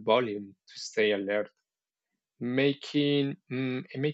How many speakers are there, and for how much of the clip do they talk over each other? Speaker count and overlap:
one, no overlap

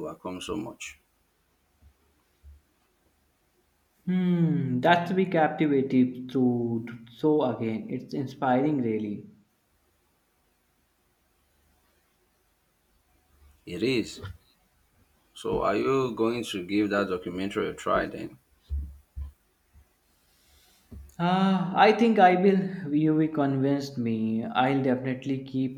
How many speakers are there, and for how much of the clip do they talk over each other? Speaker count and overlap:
two, no overlap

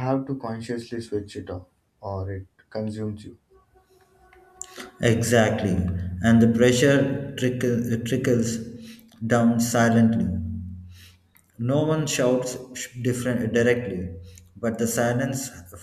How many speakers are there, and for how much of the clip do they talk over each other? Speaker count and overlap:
two, no overlap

